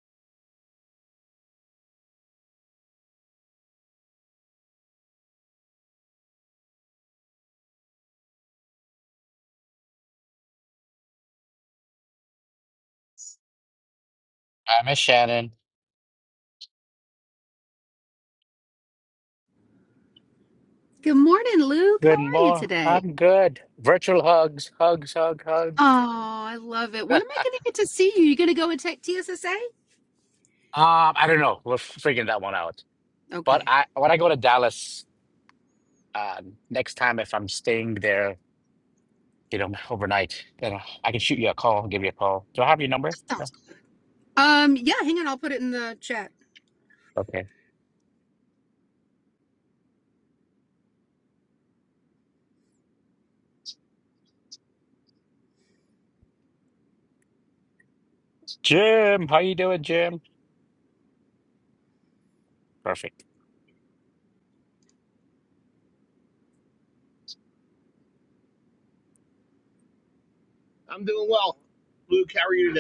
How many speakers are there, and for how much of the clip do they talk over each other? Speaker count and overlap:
3, about 2%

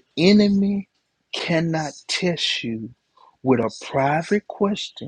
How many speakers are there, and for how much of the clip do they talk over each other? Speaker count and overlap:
1, no overlap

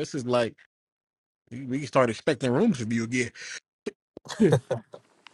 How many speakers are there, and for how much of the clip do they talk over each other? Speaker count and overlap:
1, no overlap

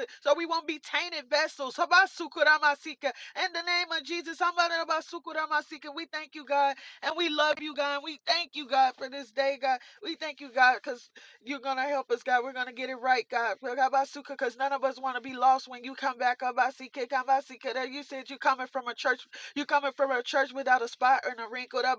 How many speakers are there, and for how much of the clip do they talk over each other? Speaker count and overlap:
1, no overlap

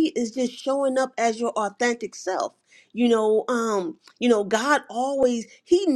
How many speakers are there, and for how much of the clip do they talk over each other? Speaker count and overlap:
1, no overlap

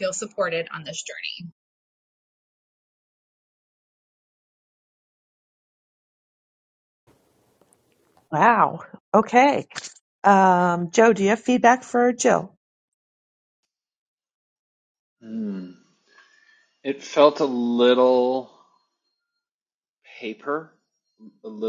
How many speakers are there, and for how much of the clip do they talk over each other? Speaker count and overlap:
3, no overlap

